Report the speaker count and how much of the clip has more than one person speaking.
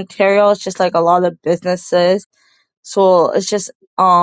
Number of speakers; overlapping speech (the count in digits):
1, no overlap